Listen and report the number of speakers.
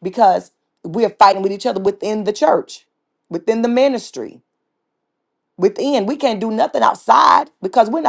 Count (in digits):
1